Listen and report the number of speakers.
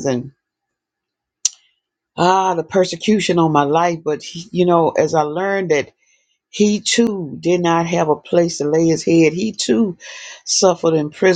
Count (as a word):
one